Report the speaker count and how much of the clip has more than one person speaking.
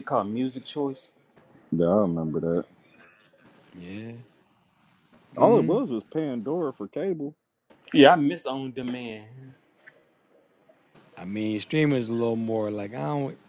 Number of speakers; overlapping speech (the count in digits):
3, about 3%